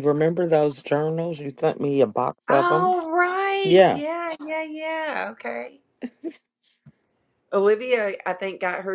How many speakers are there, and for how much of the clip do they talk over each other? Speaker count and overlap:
two, about 9%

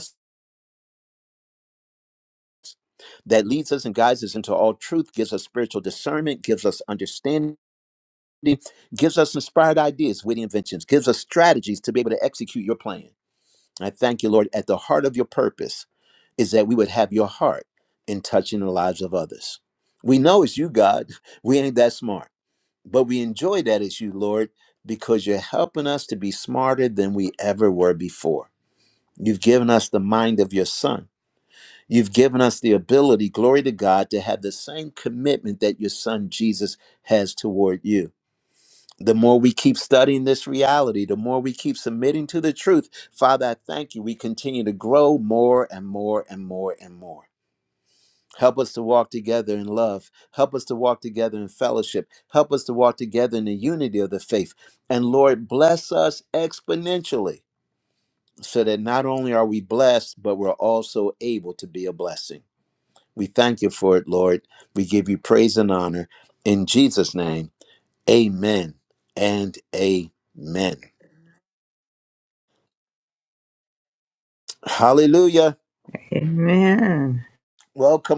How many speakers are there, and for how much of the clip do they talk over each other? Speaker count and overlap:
two, no overlap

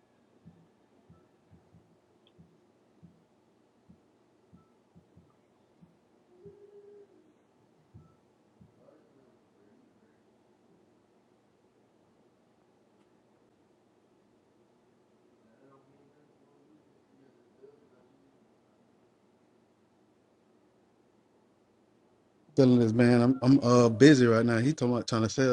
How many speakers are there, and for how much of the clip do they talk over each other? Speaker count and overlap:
one, no overlap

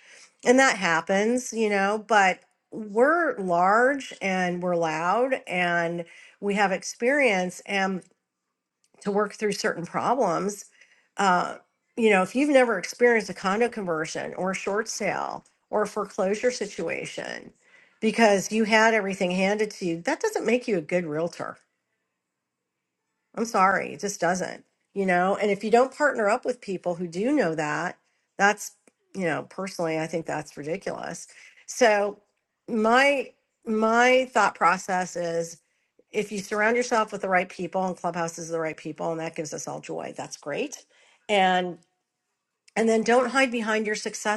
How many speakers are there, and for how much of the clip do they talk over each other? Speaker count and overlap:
one, no overlap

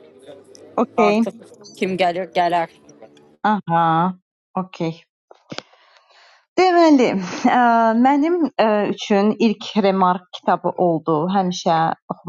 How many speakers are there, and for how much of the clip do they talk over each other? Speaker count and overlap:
two, about 3%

